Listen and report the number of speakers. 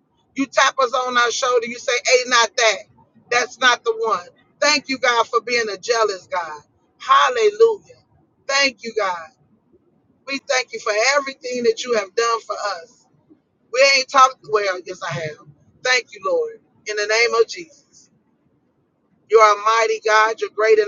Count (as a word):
one